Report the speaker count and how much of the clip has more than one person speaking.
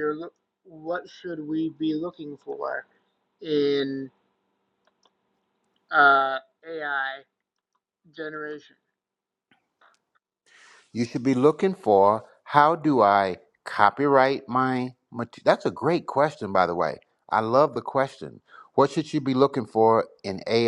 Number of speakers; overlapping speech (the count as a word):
two, no overlap